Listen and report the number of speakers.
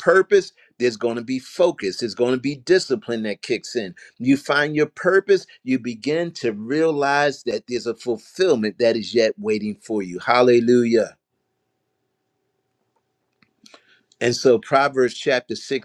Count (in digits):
1